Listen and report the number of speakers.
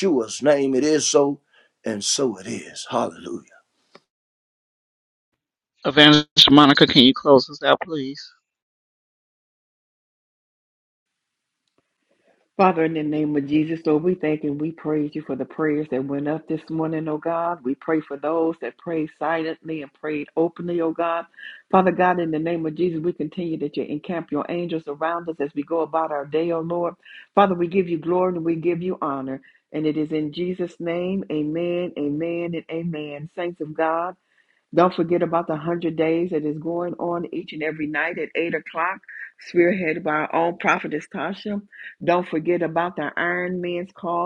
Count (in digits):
3